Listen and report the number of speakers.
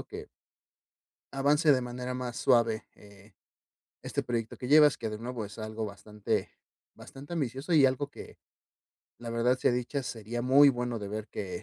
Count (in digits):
1